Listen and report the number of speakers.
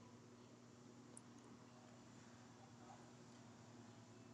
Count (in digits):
0